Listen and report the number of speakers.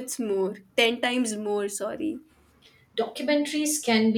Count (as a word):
two